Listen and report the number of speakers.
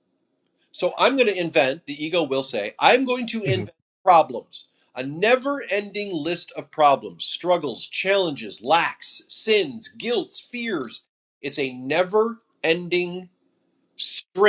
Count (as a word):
one